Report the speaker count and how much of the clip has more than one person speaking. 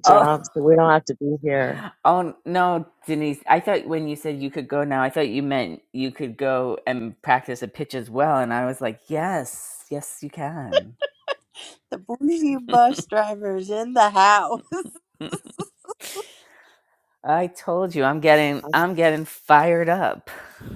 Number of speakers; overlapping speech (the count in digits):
3, about 2%